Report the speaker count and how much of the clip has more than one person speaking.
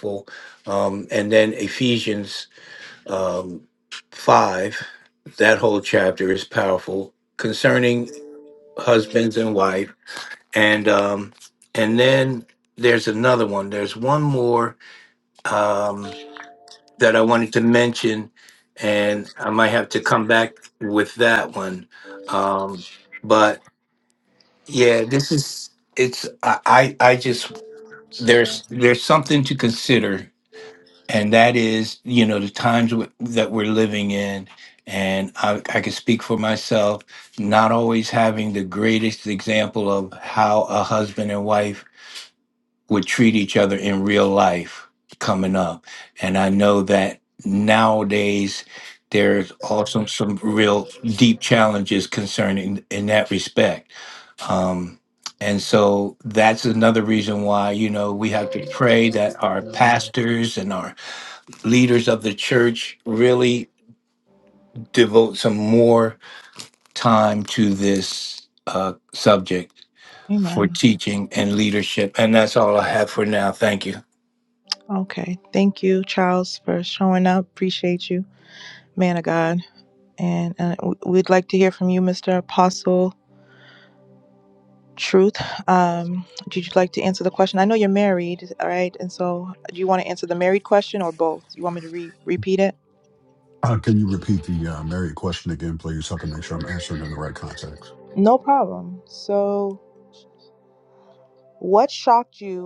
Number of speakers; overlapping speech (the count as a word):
three, under 1%